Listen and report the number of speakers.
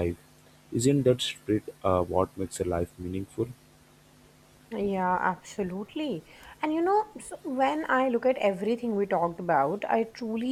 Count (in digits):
2